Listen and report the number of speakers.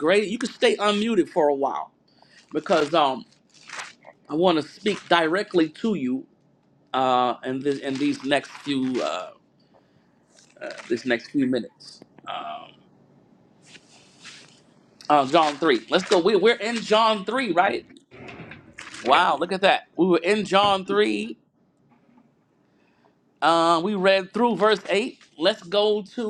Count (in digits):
1